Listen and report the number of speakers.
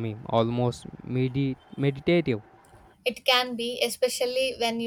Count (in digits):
2